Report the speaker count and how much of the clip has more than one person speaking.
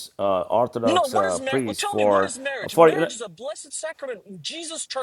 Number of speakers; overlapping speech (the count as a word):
two, about 39%